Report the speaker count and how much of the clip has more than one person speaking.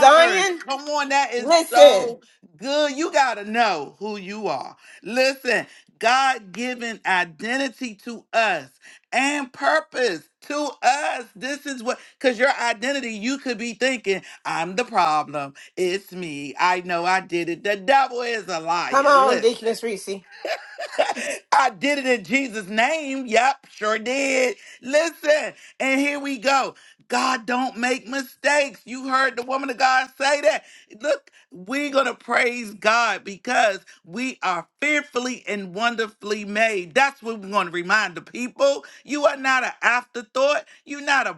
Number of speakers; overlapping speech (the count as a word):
two, about 4%